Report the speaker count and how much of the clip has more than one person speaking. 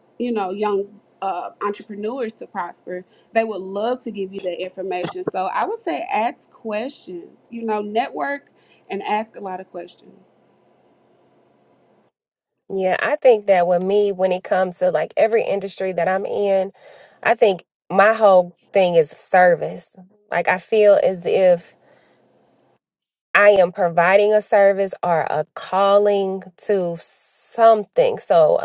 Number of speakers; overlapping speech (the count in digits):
2, no overlap